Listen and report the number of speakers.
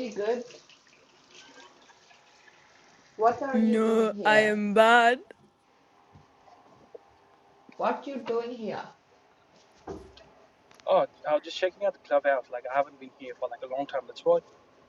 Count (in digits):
3